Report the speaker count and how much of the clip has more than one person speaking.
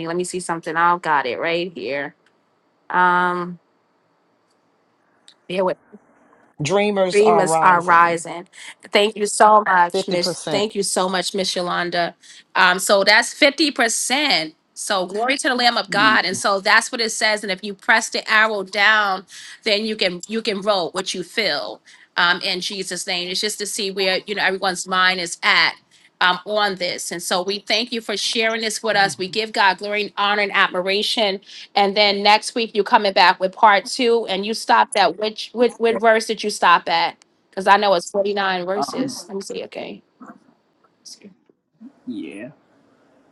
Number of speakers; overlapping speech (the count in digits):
3, about 6%